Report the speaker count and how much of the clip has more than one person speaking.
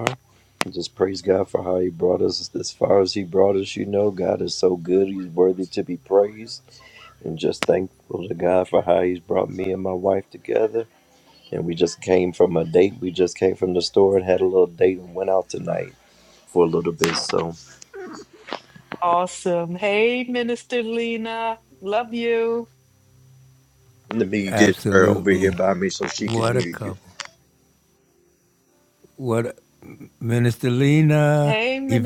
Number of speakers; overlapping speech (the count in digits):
3, about 8%